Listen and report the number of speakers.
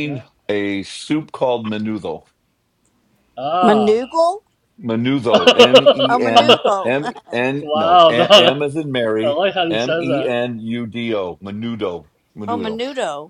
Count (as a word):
three